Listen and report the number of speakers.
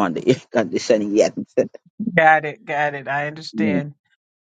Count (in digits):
2